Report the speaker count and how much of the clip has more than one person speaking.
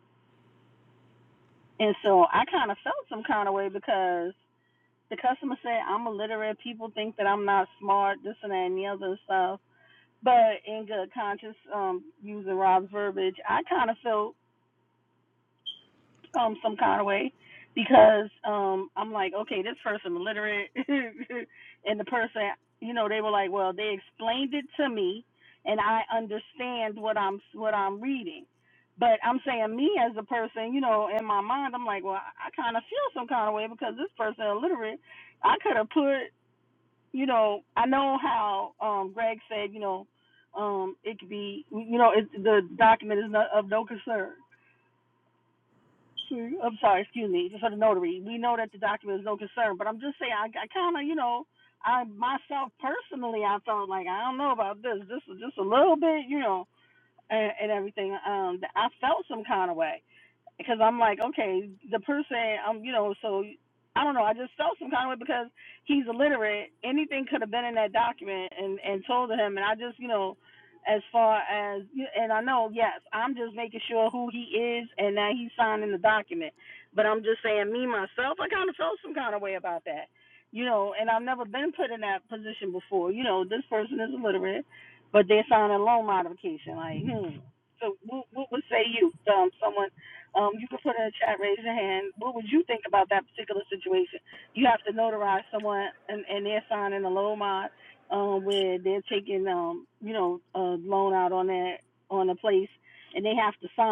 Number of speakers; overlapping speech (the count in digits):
1, no overlap